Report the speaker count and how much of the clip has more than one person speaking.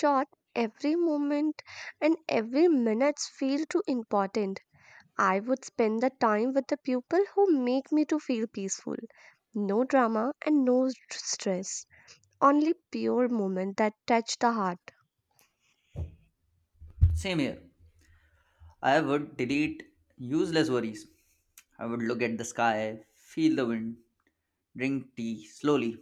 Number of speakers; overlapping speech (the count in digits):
2, no overlap